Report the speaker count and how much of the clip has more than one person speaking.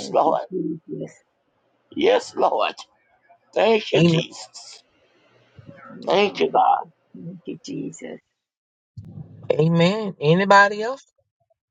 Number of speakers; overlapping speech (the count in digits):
3, about 11%